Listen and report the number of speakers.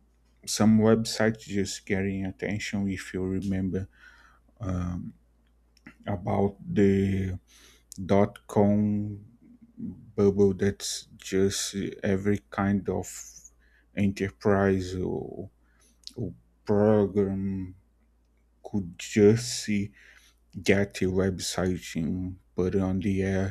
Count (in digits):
1